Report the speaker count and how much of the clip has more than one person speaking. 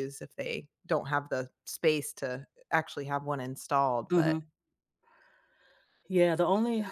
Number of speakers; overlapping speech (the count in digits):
2, about 4%